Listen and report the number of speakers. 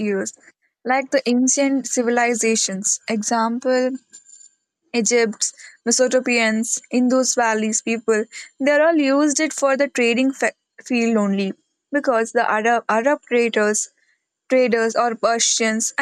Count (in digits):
1